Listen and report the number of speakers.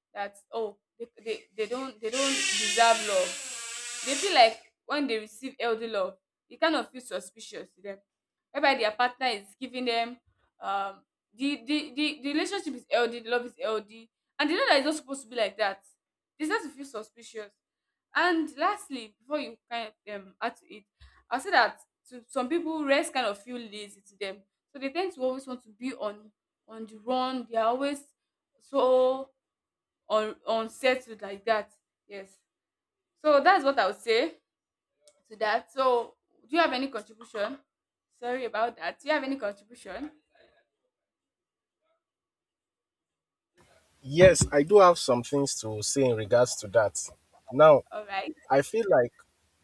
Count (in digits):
2